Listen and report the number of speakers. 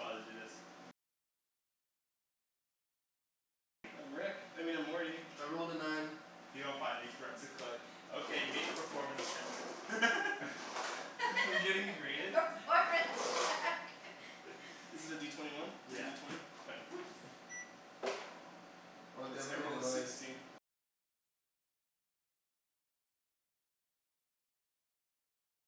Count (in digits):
4